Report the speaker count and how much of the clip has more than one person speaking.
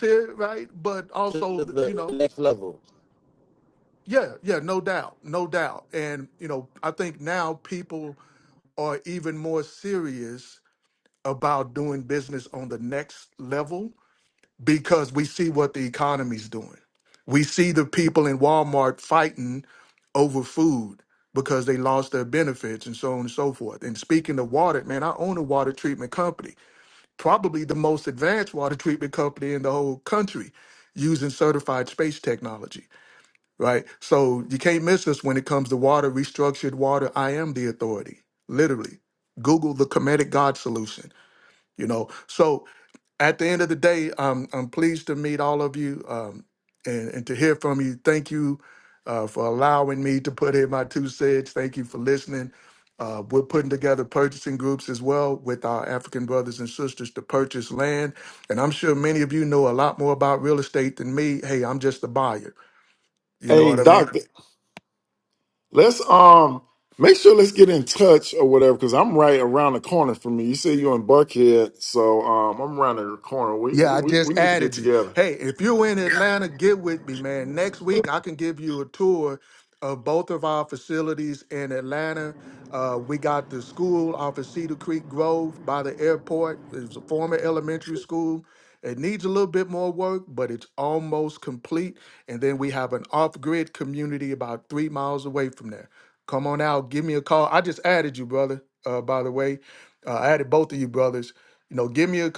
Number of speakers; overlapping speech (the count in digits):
3, about 3%